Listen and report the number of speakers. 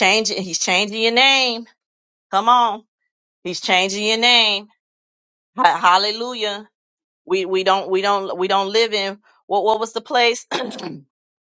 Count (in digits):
1